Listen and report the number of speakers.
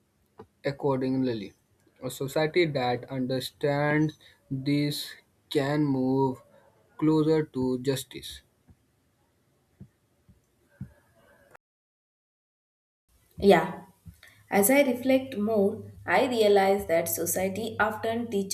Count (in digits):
2